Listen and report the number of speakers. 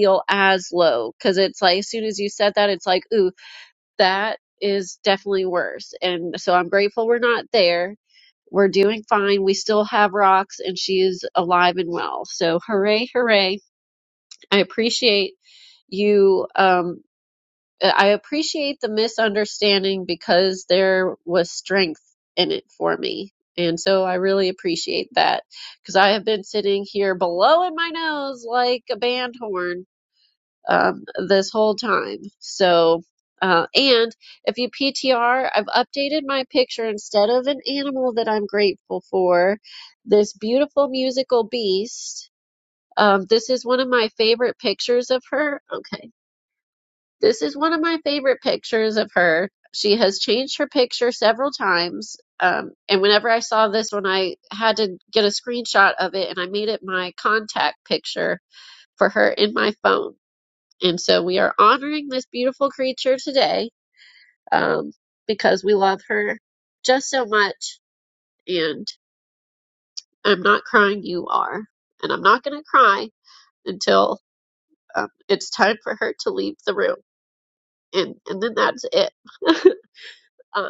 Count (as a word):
one